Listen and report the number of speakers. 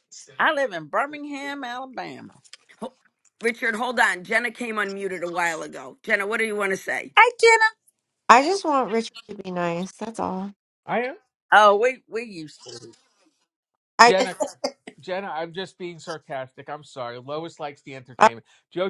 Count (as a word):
four